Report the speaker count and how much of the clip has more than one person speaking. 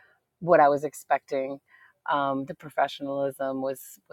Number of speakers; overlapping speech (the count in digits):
1, no overlap